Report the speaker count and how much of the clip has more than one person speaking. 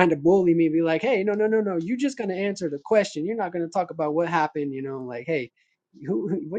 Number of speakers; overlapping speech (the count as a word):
one, no overlap